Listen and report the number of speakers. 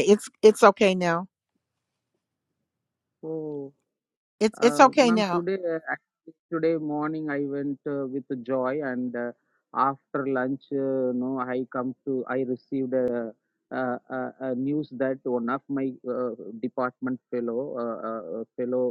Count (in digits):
2